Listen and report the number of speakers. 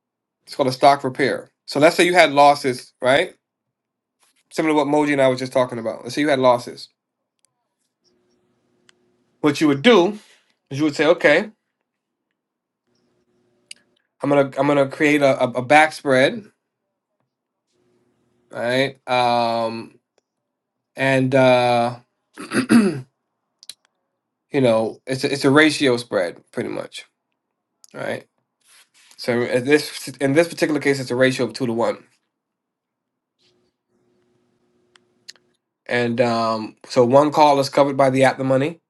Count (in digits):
1